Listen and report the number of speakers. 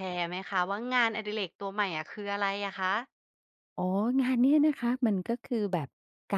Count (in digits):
2